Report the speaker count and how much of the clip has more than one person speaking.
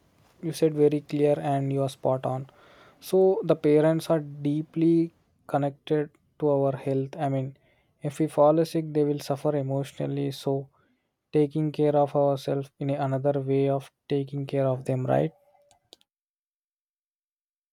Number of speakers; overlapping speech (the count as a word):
one, no overlap